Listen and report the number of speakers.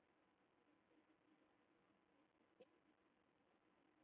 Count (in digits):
0